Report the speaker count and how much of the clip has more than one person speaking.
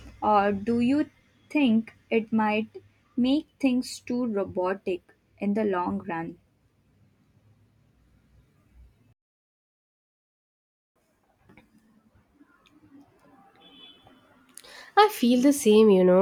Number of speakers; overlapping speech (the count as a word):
two, no overlap